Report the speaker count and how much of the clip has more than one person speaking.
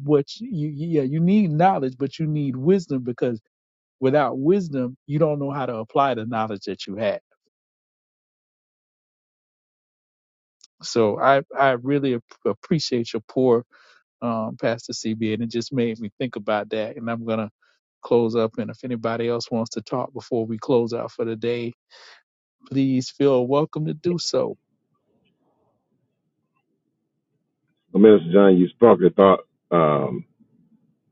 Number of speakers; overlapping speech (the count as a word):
two, no overlap